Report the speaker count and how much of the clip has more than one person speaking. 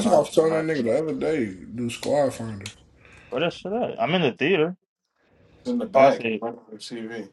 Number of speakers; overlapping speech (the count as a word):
three, about 16%